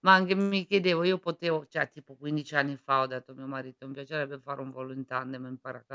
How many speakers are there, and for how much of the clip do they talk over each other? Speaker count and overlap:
1, no overlap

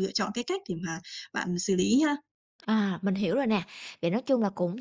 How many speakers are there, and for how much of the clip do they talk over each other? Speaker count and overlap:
2, no overlap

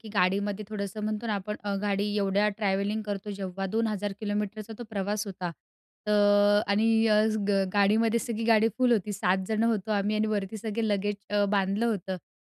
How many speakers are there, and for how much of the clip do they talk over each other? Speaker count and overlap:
1, no overlap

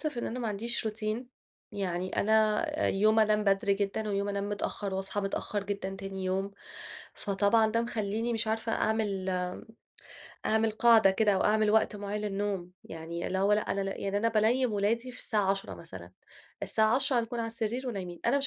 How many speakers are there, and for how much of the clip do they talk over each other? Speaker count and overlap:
1, no overlap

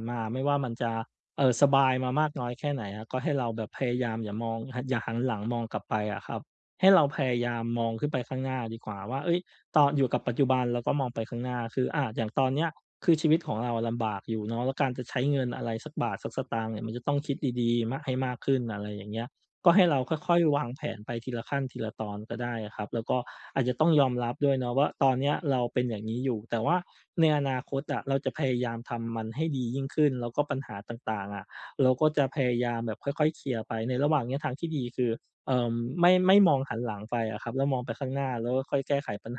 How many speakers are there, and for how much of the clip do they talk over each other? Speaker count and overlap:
1, no overlap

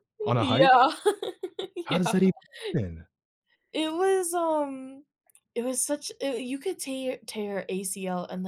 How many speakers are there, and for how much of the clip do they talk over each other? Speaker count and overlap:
2, about 10%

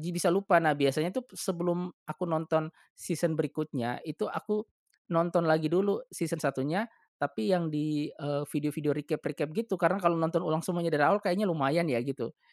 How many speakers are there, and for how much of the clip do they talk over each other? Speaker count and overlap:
1, no overlap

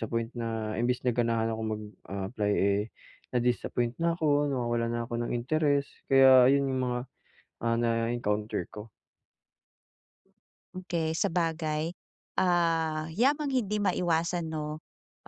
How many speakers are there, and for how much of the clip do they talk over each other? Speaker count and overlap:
2, no overlap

